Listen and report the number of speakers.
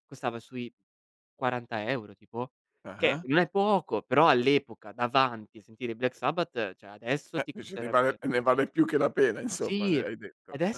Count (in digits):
2